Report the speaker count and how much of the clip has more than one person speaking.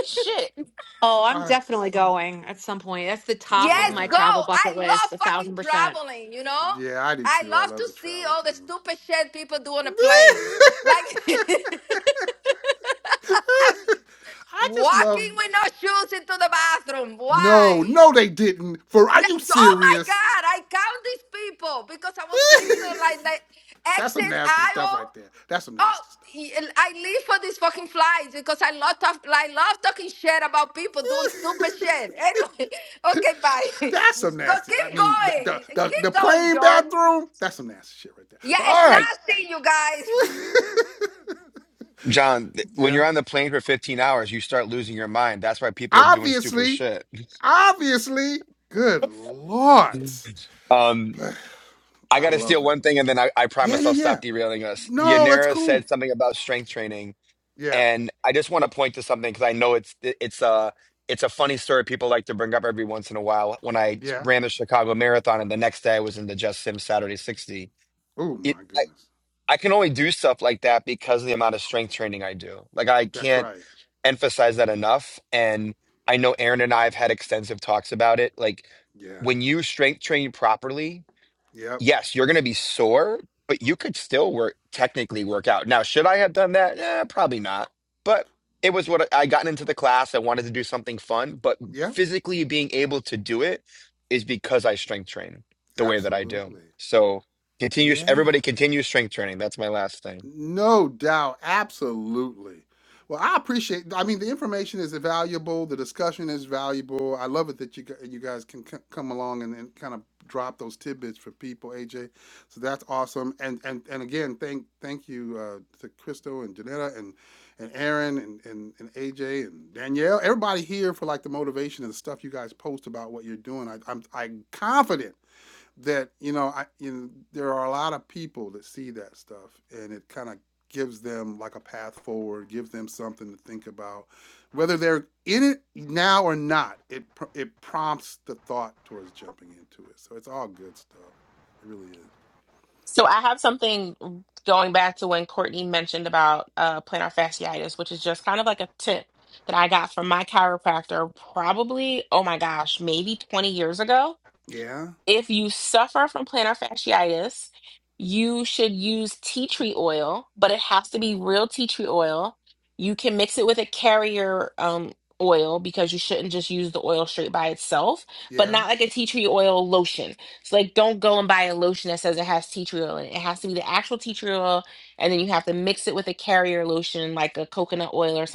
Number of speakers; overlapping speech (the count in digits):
5, about 10%